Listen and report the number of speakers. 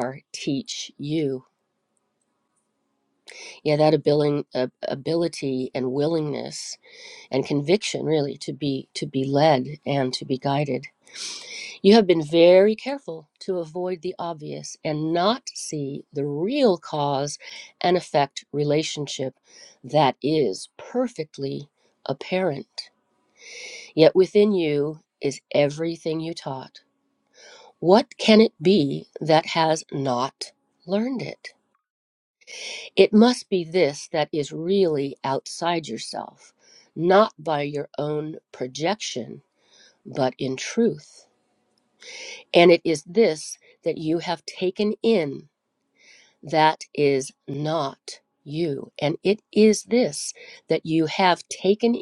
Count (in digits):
1